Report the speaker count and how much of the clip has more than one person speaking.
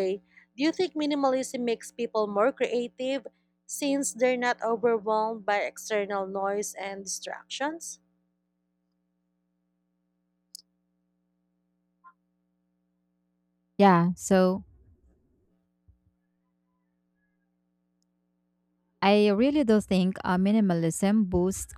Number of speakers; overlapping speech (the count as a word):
two, no overlap